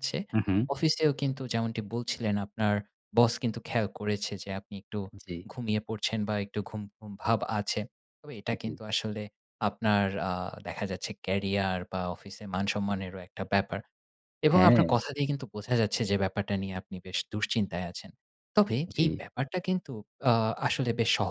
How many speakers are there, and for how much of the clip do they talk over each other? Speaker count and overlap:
2, about 4%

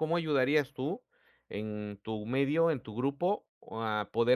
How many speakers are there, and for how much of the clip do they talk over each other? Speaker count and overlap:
1, no overlap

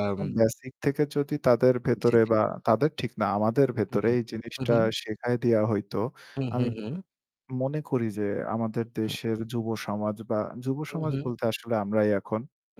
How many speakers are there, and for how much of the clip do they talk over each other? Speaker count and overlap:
2, about 14%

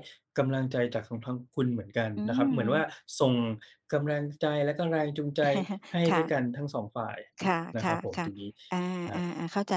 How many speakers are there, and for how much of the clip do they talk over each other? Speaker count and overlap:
2, about 15%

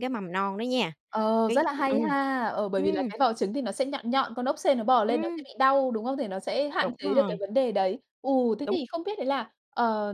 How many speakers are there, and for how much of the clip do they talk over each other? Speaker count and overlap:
2, about 19%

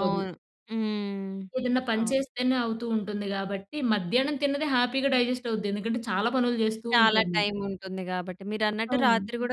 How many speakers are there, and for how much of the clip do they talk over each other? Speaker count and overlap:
2, about 13%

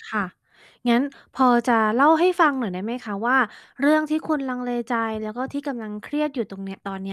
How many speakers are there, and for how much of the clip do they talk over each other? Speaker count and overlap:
1, no overlap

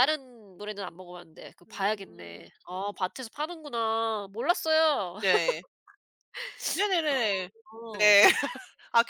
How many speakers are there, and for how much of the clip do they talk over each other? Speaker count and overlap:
2, about 10%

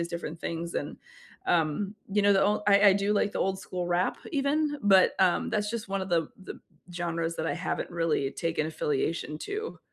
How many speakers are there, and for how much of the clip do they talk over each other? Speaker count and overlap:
1, no overlap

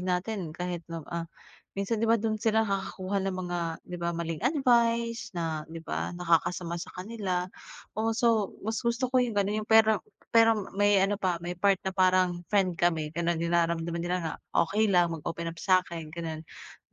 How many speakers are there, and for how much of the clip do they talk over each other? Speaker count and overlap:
1, no overlap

